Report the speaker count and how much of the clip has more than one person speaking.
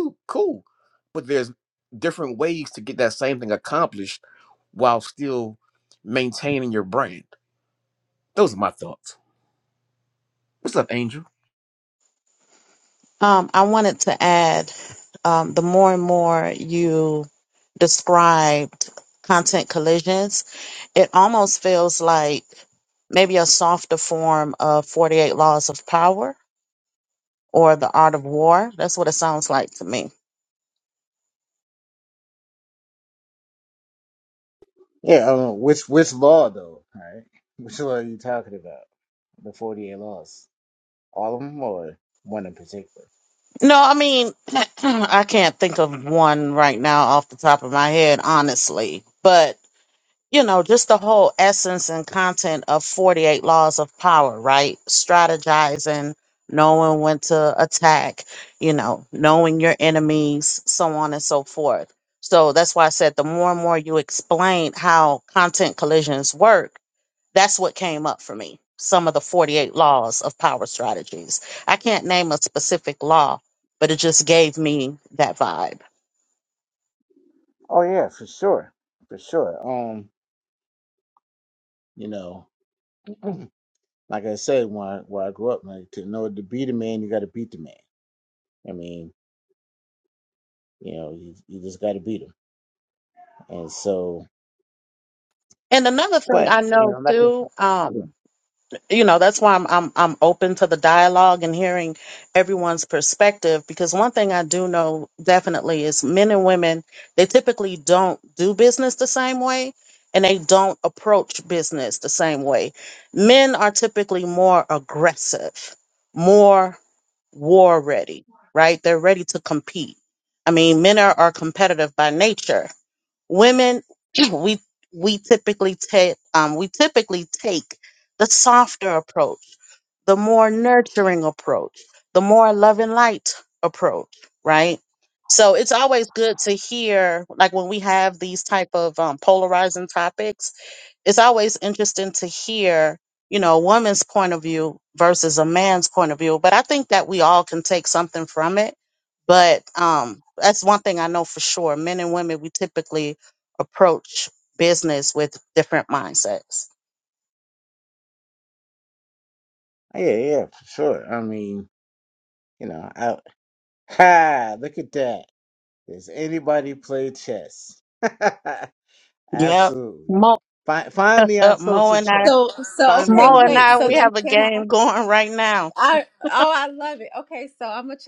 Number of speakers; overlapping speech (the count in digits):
4, about 2%